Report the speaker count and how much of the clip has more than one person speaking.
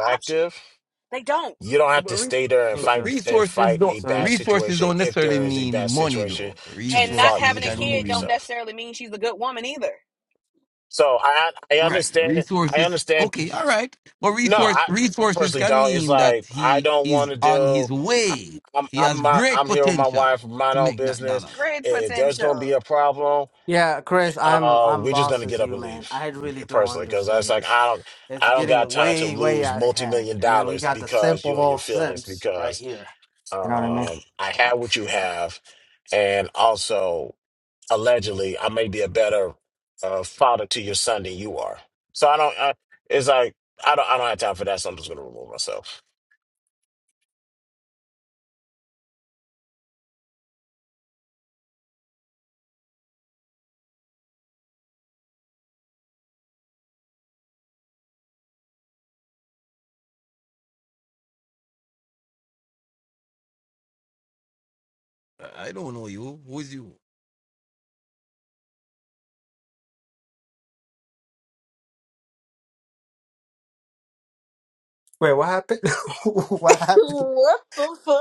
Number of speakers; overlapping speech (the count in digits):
5, about 27%